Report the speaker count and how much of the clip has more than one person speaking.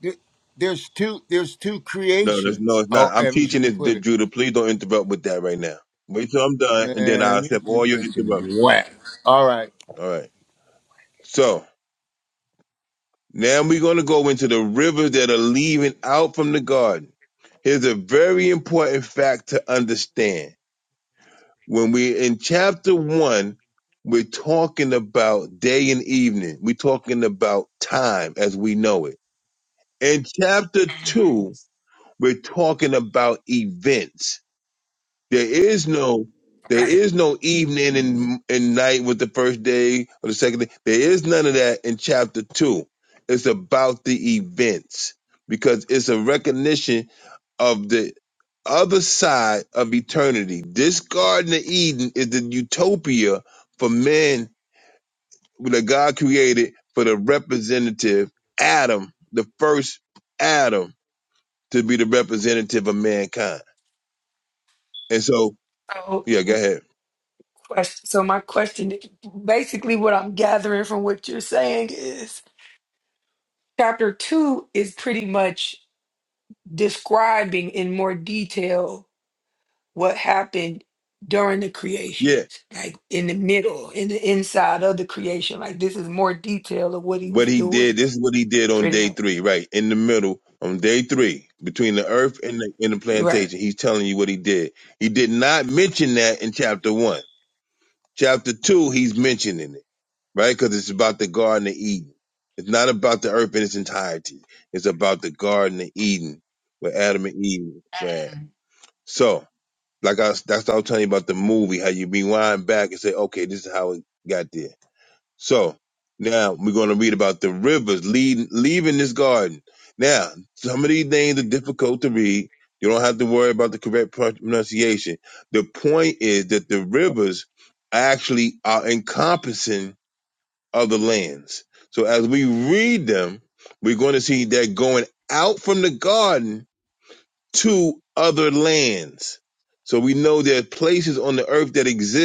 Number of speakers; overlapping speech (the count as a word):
three, about 4%